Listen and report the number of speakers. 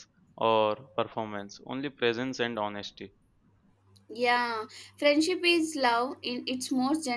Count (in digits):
2